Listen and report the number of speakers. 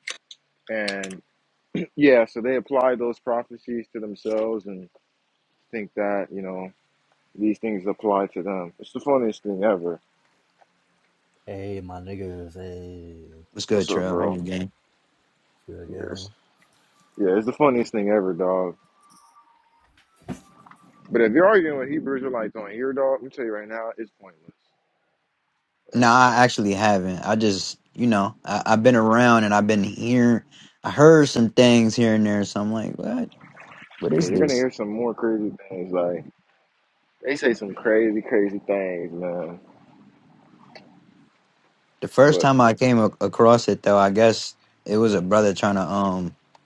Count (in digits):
3